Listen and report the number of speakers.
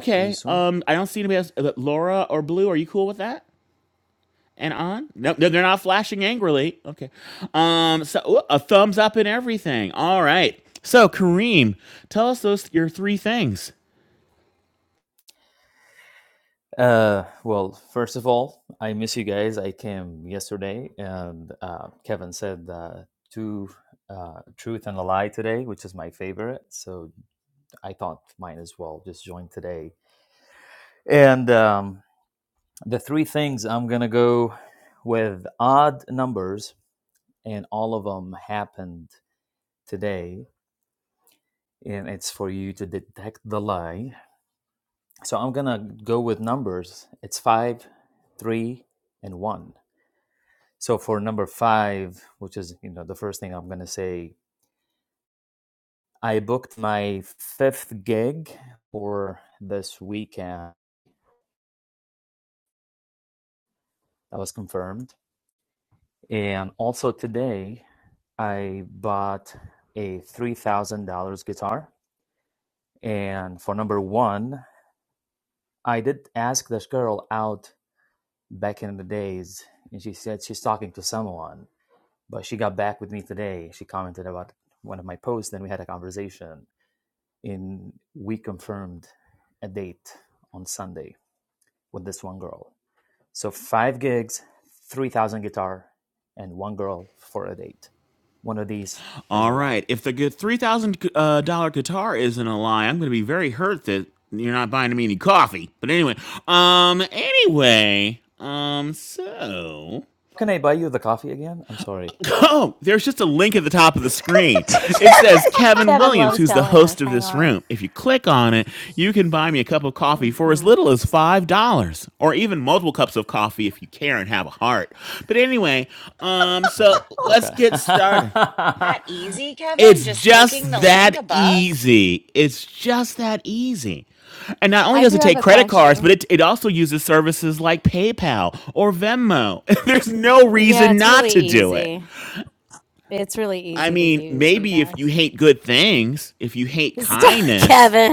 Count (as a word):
four